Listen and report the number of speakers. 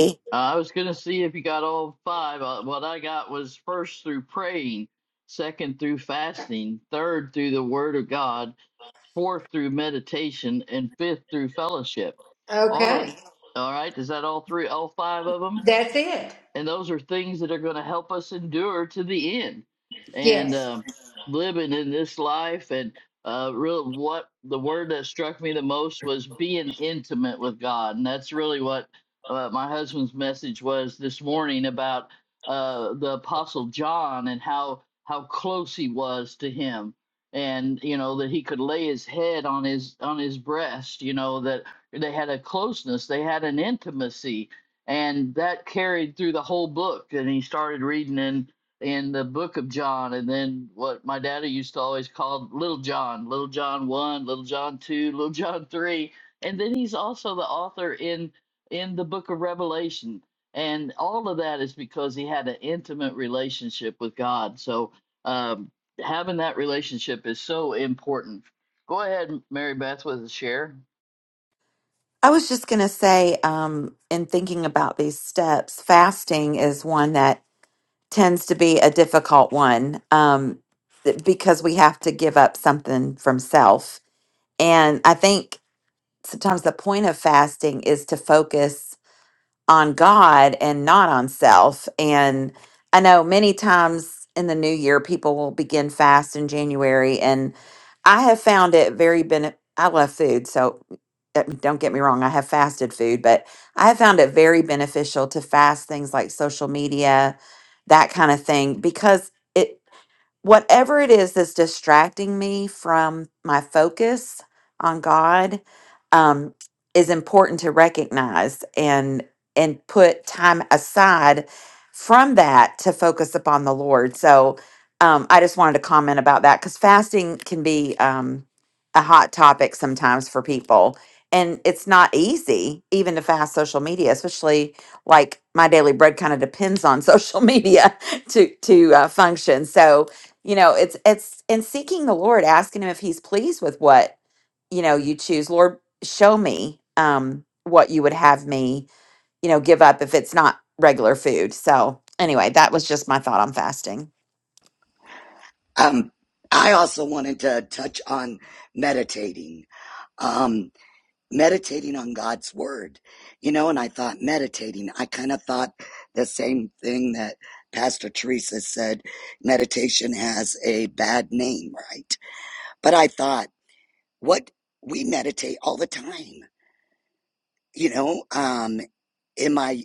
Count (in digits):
4